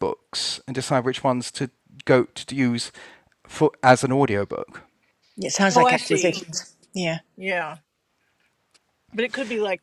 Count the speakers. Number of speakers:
3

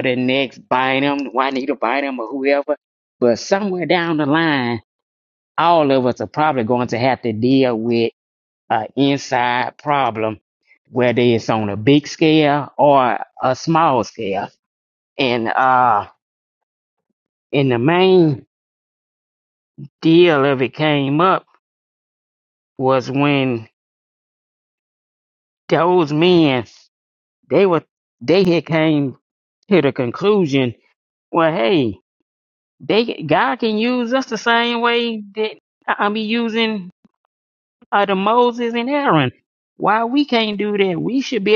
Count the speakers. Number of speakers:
1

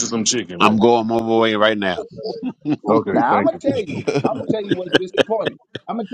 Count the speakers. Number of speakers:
3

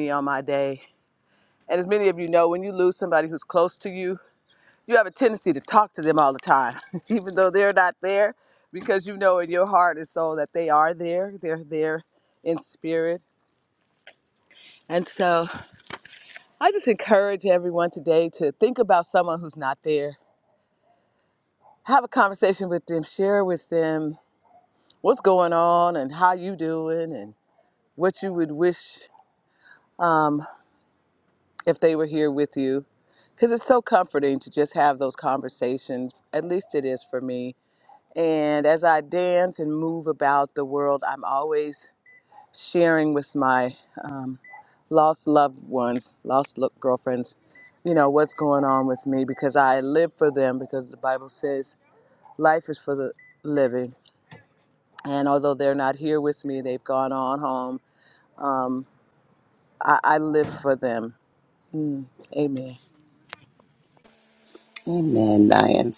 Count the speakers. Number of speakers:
2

